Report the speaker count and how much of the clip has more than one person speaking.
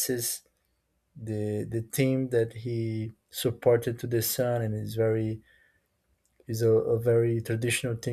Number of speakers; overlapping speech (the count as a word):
one, no overlap